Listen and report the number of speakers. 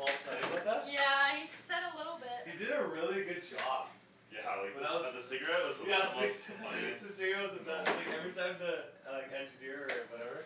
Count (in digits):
3